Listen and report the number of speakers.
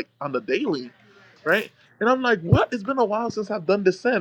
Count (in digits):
1